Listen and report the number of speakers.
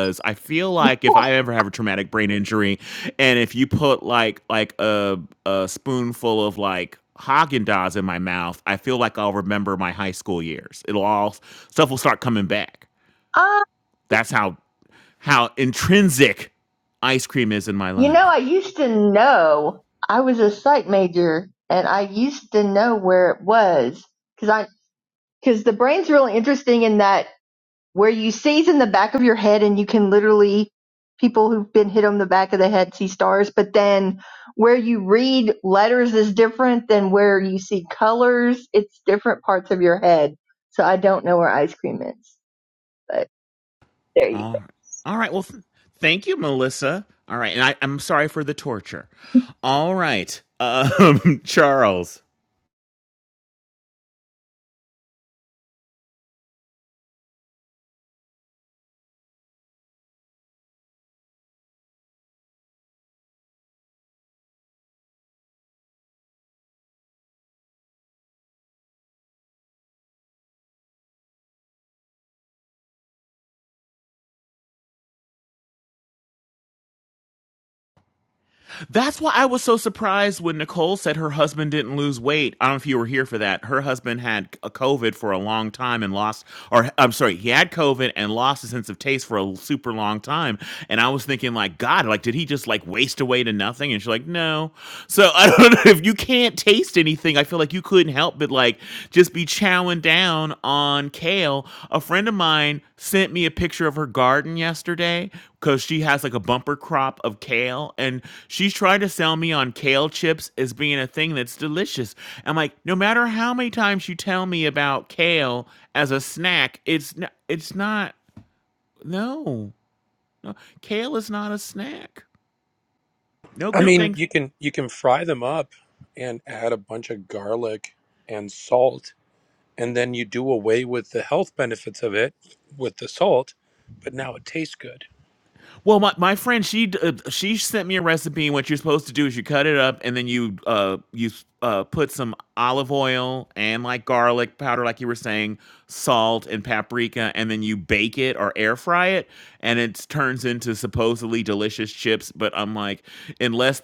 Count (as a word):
three